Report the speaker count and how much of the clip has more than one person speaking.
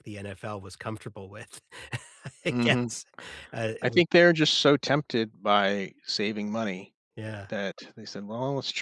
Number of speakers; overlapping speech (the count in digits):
2, about 8%